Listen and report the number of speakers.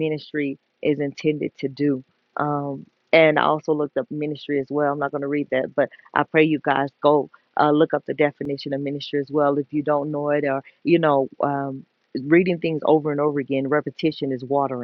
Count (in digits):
1